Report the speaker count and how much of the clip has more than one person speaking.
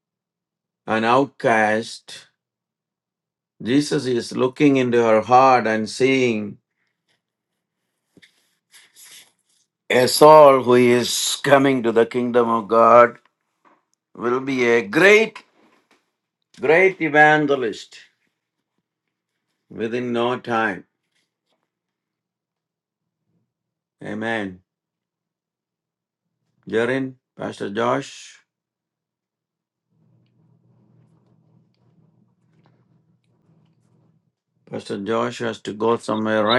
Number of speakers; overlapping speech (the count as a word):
one, no overlap